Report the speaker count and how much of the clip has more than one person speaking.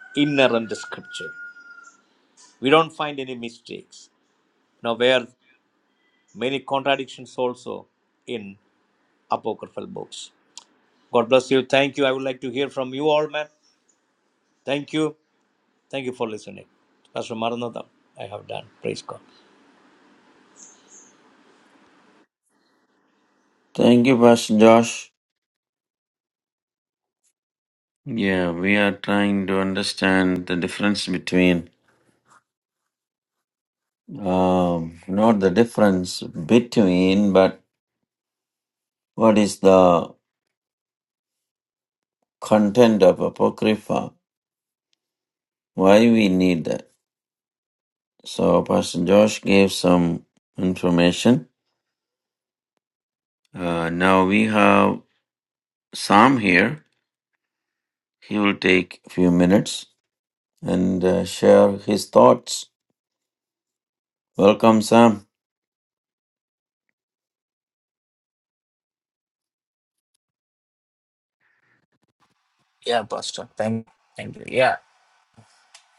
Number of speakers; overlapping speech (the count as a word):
three, no overlap